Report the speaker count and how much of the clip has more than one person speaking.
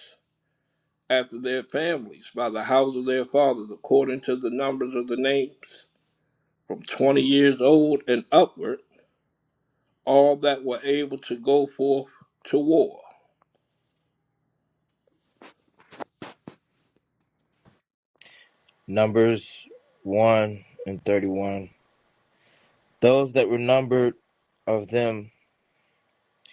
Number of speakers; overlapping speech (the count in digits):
2, no overlap